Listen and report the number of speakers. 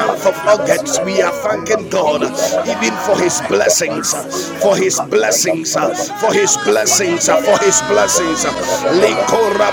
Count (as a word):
two